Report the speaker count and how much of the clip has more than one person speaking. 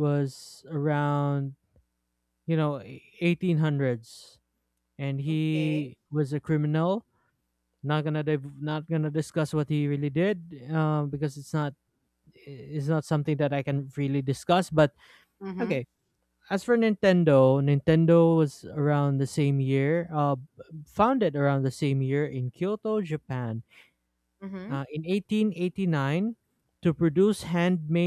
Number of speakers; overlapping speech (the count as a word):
two, about 3%